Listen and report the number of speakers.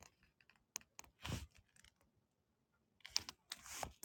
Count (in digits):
0